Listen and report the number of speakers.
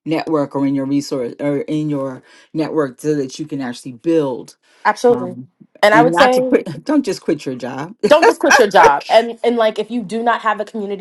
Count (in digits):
2